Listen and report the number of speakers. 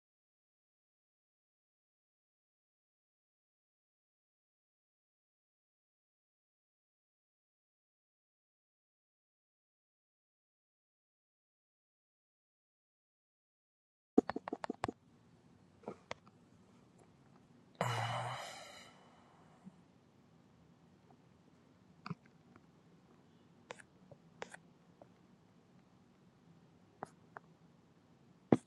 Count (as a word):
zero